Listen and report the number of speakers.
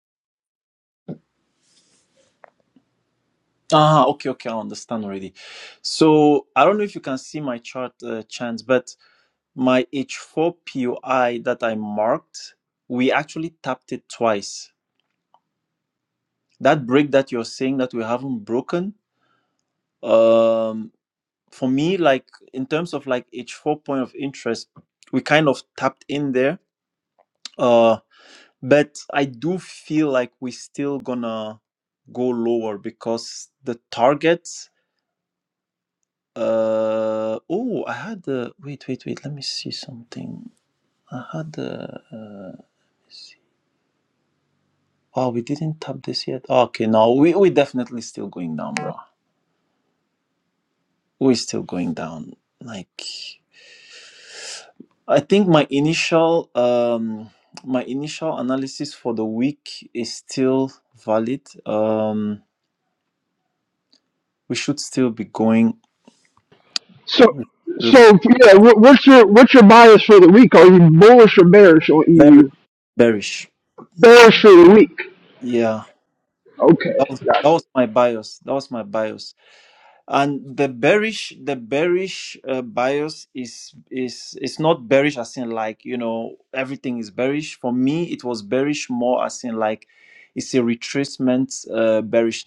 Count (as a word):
two